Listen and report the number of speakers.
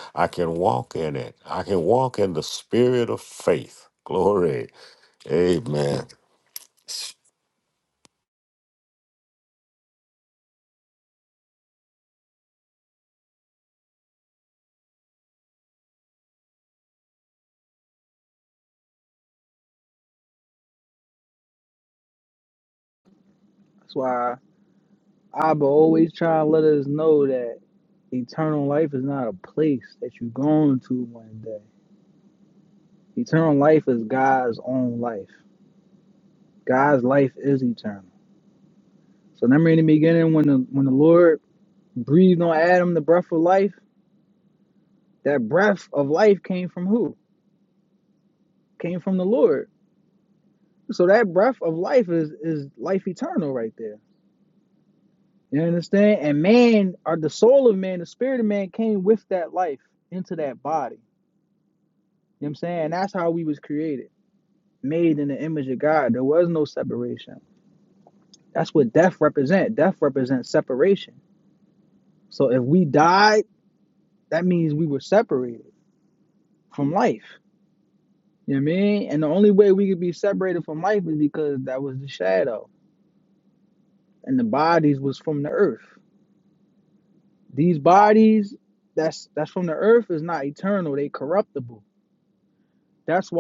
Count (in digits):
2